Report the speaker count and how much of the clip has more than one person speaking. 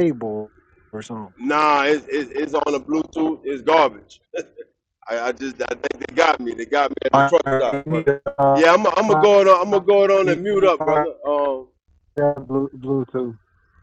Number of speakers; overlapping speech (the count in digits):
2, about 11%